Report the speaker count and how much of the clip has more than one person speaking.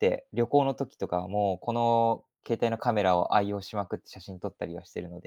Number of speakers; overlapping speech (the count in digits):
1, no overlap